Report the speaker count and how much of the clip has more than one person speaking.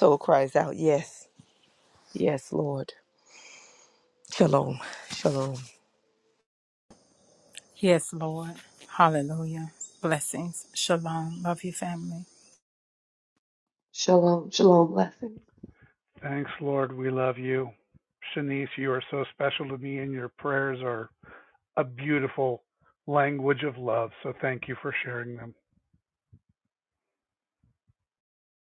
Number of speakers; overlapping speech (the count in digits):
4, no overlap